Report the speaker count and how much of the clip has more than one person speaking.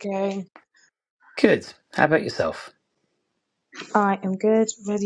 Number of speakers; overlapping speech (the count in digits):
2, no overlap